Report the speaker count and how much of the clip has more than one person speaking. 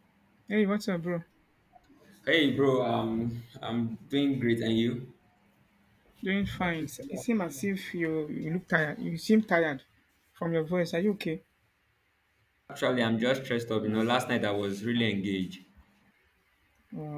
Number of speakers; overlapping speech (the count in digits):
2, no overlap